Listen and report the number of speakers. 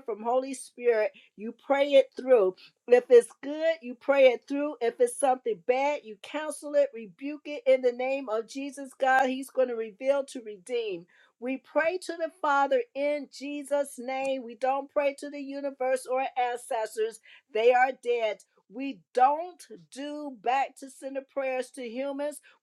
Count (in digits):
1